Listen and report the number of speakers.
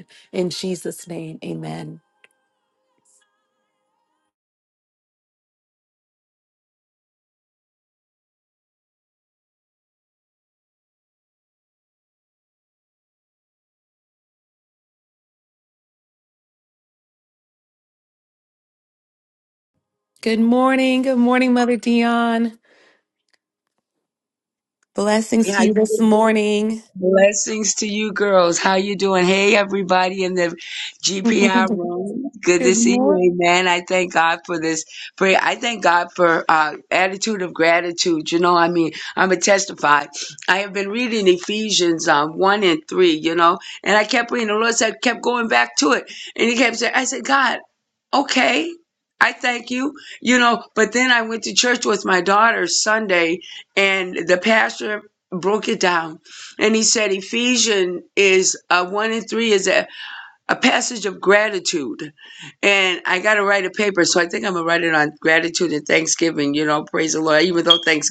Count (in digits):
2